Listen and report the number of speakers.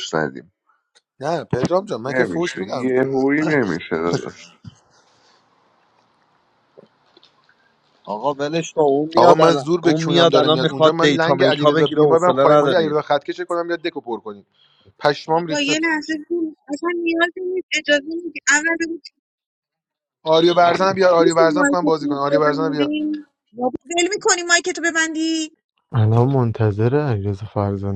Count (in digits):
5